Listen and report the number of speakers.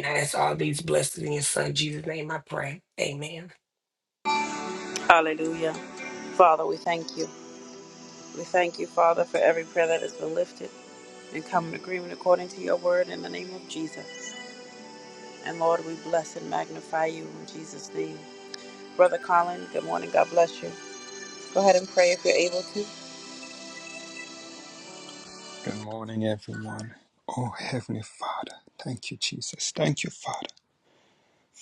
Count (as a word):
three